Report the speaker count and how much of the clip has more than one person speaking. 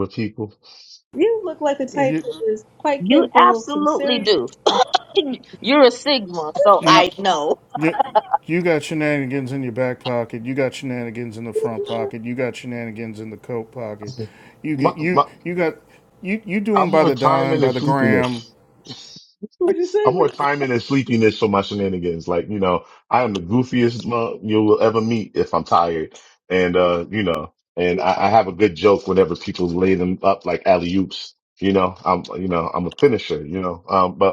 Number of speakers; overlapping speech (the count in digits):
4, about 14%